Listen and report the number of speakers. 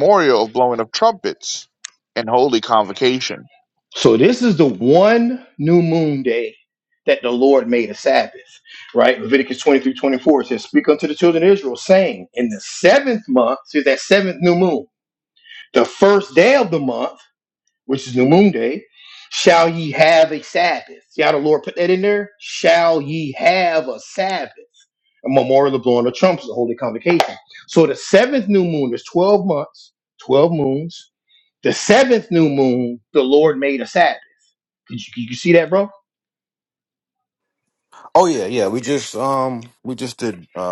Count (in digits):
3